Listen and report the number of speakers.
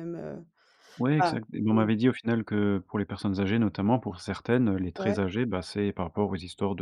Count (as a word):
two